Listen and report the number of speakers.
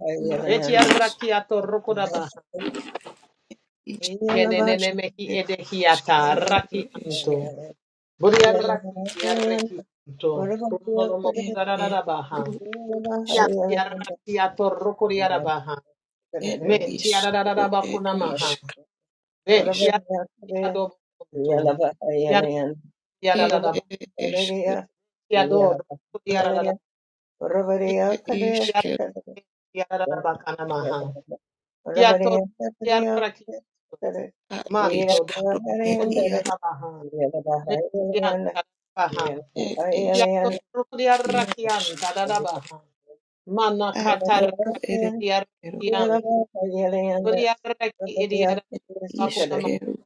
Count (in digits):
3